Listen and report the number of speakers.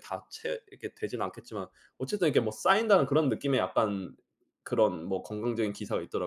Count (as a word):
one